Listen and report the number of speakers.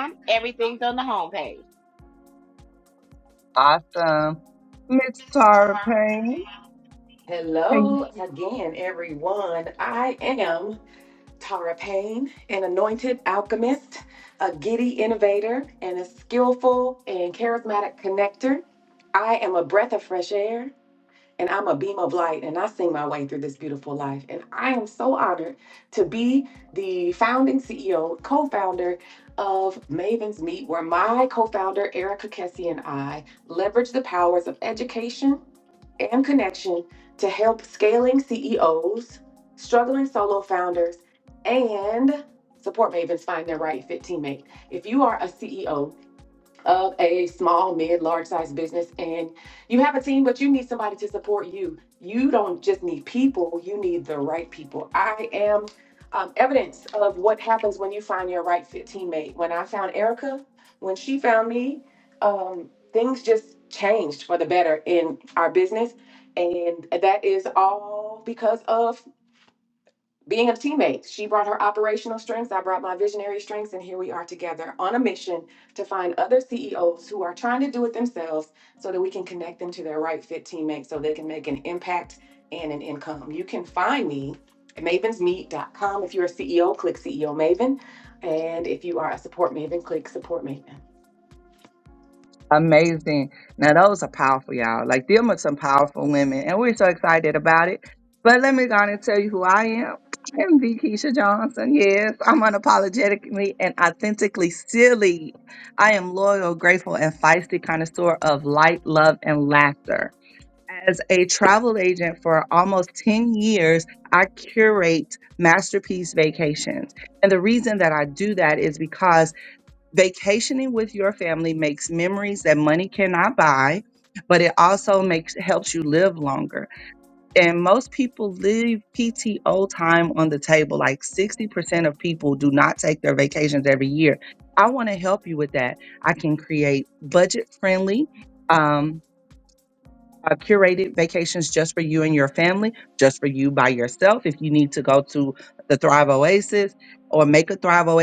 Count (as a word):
three